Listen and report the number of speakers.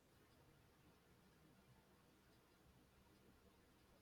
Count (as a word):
zero